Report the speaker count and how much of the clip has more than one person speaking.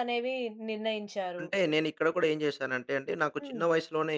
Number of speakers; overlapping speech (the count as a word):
two, about 8%